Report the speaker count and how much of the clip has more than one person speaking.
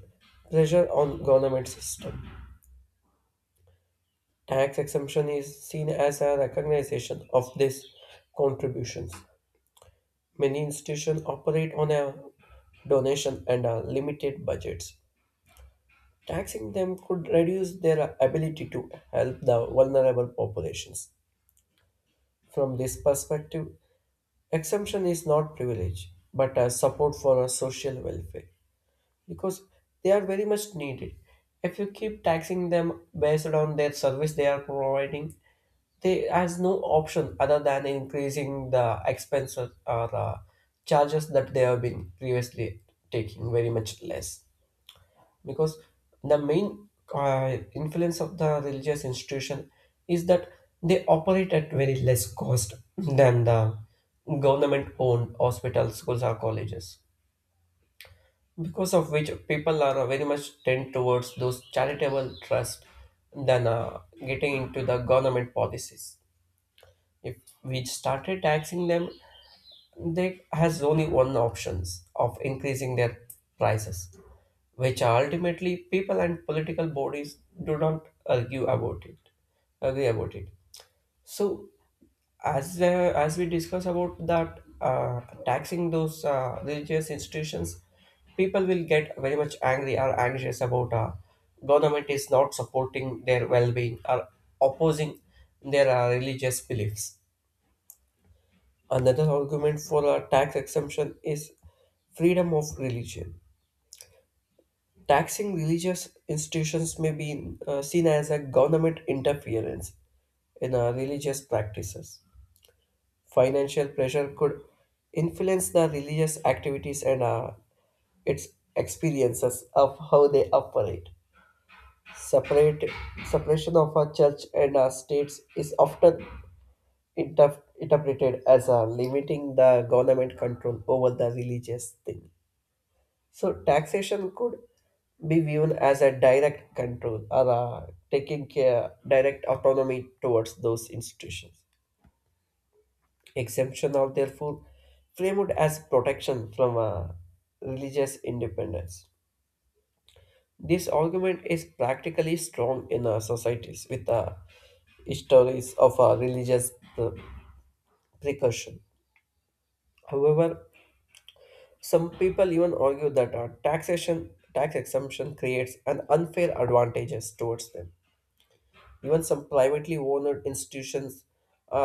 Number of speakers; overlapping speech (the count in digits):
1, no overlap